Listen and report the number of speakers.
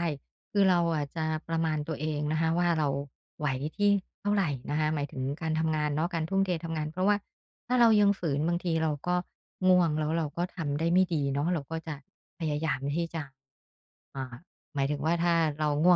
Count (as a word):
one